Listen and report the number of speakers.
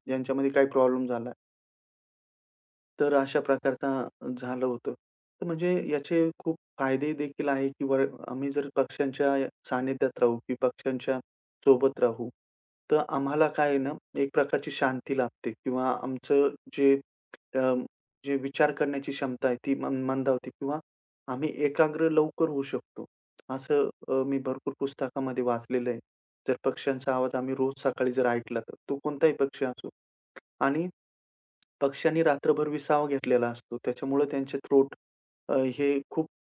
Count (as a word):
one